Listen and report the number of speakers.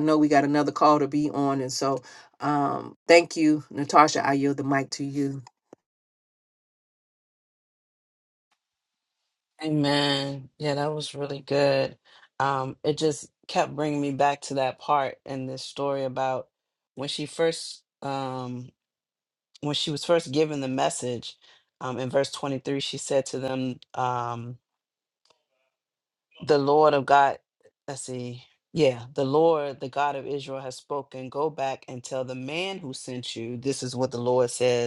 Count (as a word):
two